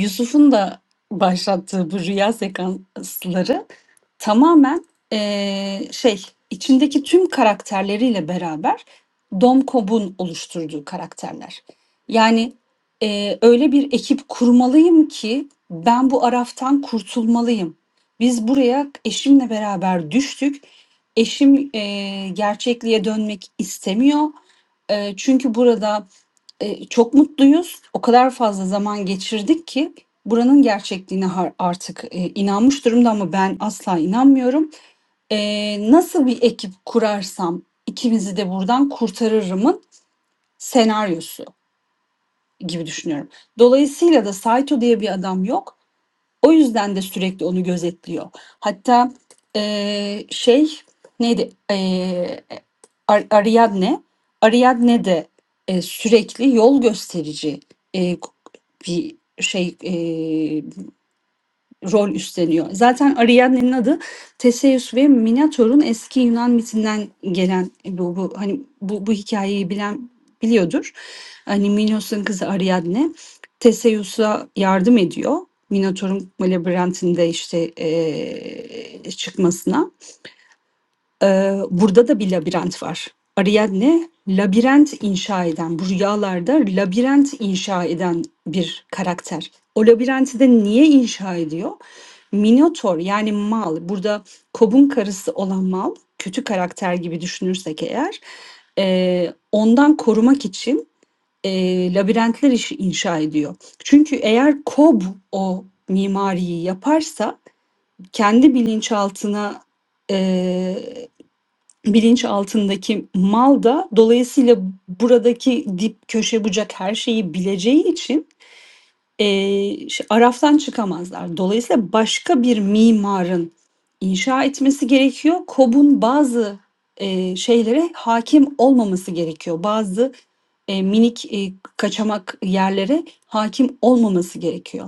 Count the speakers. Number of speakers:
1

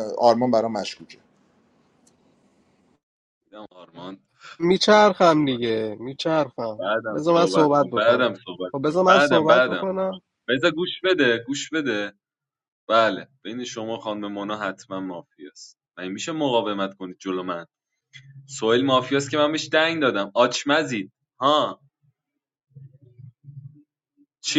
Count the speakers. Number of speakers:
3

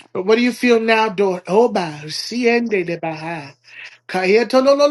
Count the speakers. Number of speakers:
1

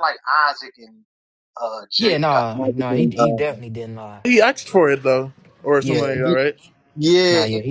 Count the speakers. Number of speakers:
3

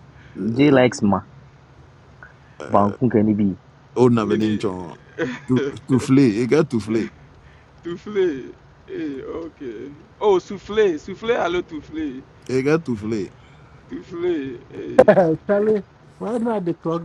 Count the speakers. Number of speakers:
4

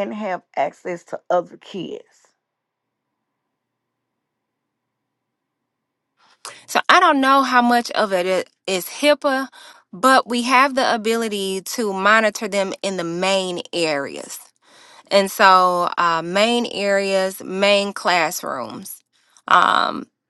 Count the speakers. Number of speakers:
2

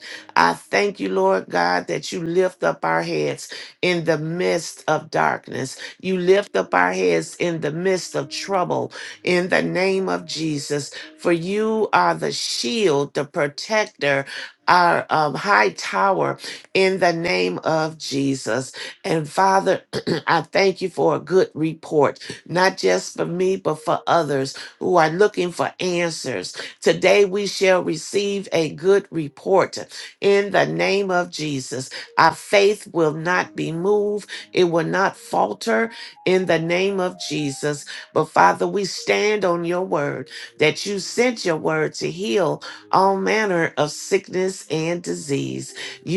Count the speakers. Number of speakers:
1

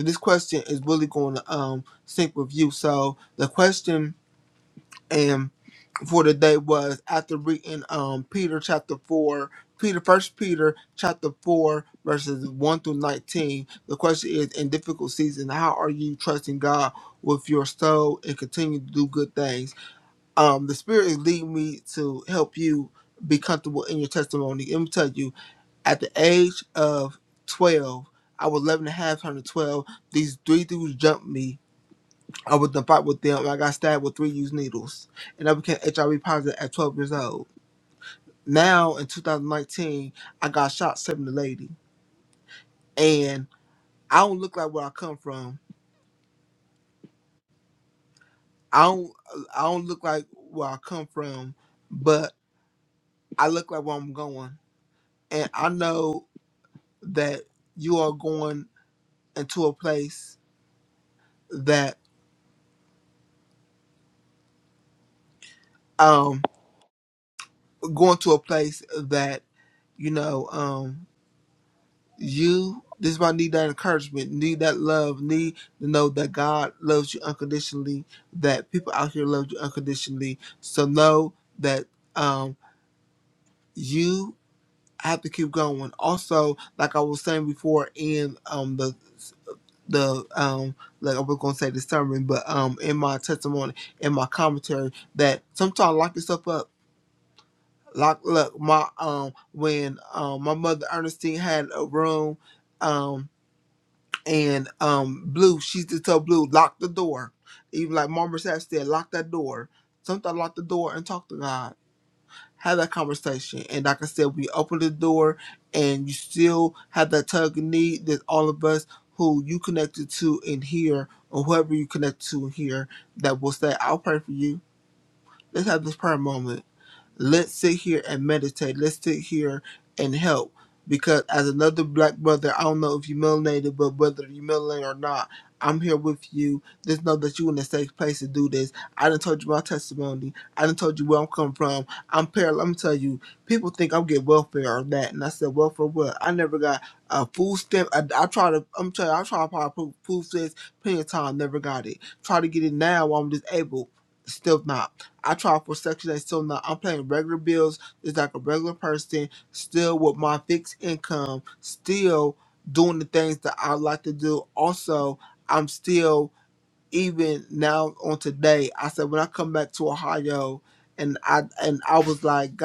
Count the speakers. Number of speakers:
1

